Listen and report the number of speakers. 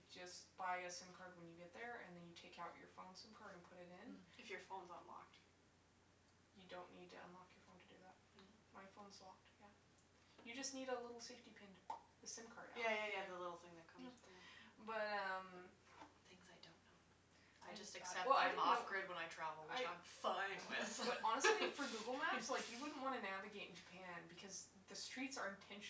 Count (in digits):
2